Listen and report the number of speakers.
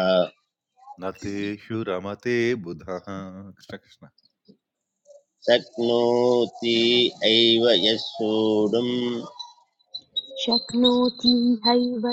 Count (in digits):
3